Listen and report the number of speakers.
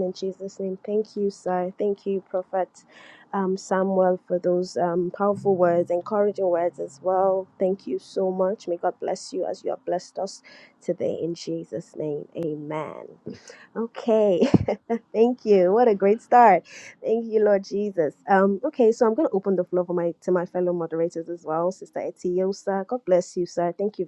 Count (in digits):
1